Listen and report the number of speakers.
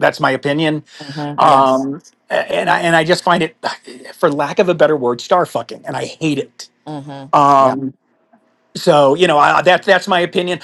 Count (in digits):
2